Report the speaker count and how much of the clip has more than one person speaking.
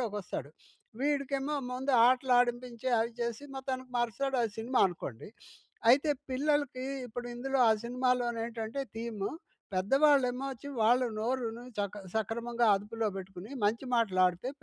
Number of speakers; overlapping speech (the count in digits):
1, no overlap